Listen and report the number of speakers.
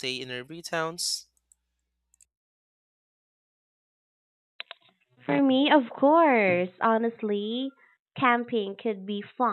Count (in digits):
2